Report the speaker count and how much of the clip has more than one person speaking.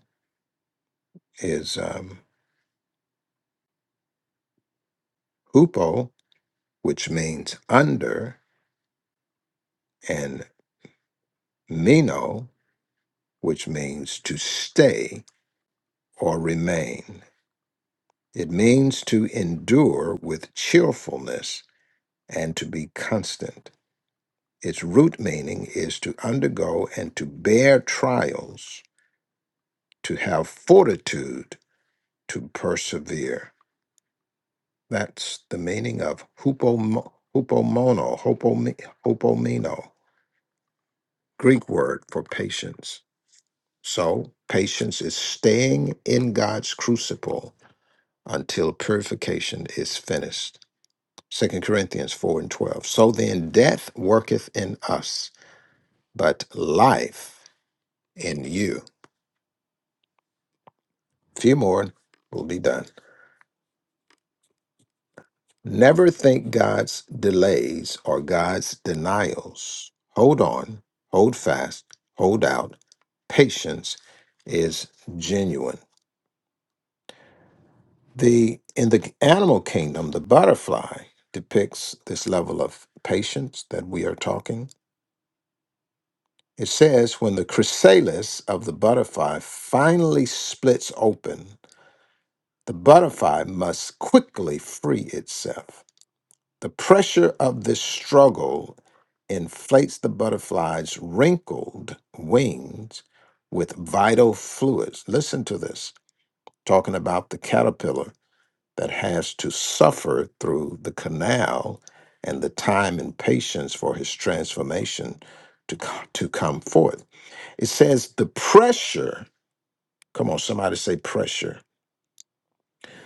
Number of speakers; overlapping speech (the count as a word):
one, no overlap